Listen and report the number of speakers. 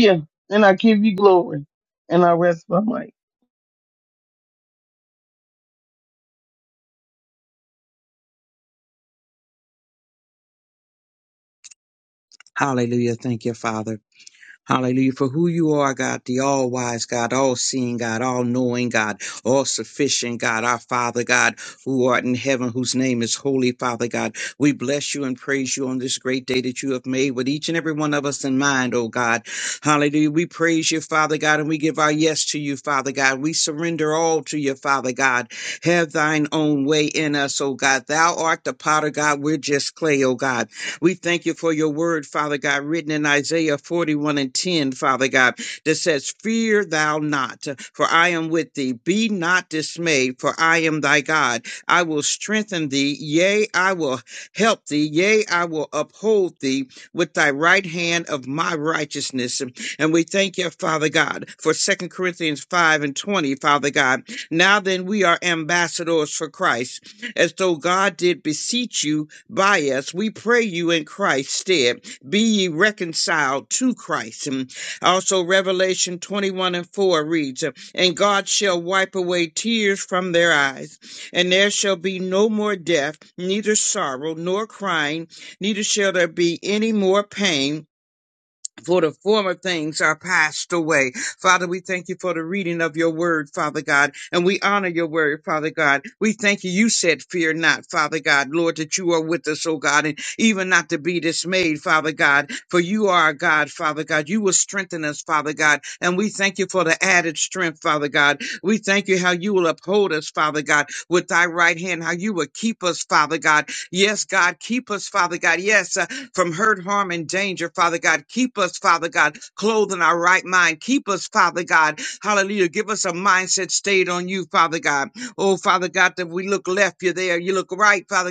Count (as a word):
two